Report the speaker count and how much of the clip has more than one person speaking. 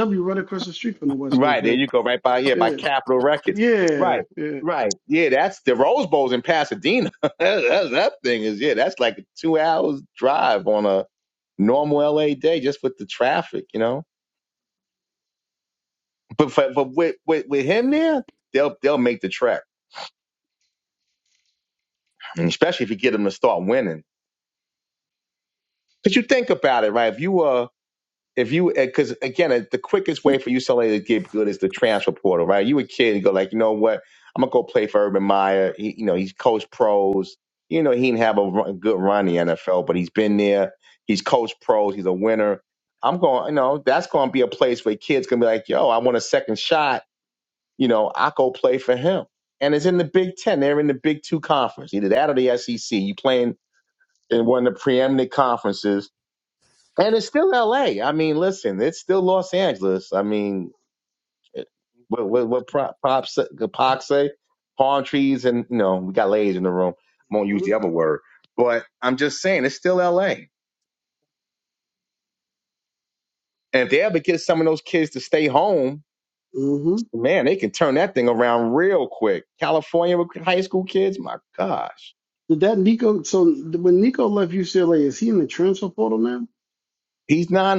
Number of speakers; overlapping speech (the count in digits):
2, about 1%